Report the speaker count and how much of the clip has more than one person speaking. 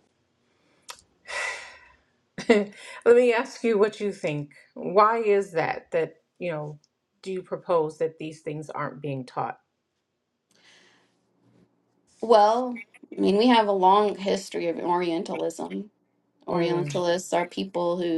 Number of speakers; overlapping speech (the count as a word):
two, about 3%